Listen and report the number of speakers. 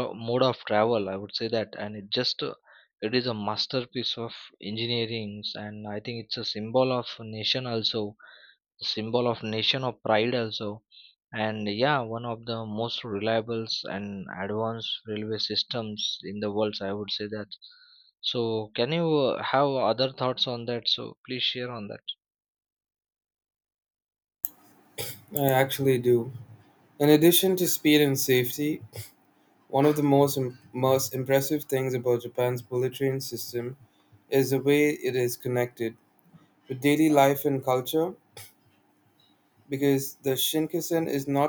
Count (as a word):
two